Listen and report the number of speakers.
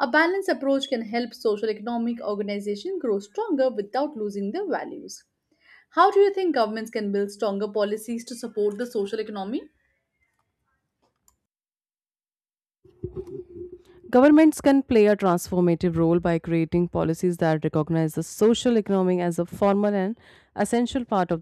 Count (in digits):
2